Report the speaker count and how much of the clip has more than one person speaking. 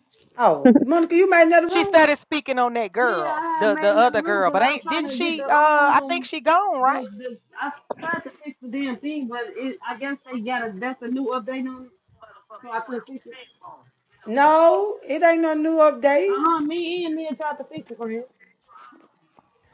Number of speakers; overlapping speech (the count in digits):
3, about 20%